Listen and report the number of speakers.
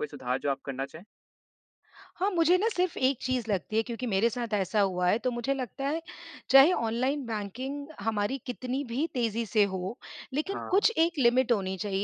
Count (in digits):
2